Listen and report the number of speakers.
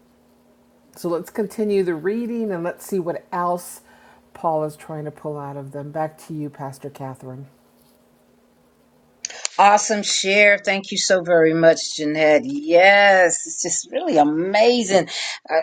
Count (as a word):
two